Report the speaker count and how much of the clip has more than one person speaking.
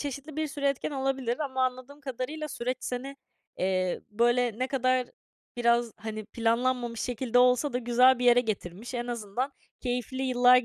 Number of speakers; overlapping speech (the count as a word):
one, no overlap